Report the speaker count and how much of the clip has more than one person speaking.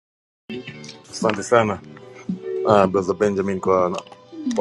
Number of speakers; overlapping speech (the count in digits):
1, no overlap